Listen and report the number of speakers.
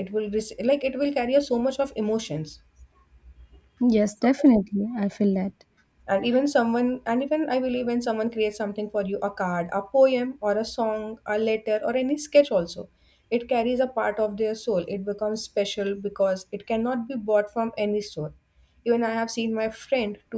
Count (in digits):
2